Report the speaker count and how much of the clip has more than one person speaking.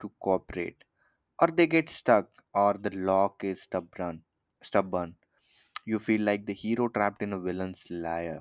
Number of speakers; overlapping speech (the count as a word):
one, no overlap